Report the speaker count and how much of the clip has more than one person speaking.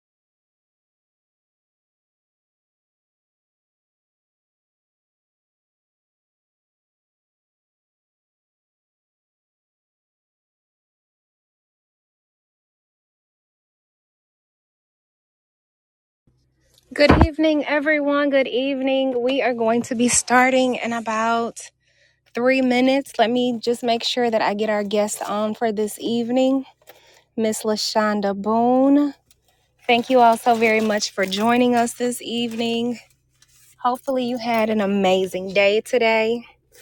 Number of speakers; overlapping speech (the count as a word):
one, no overlap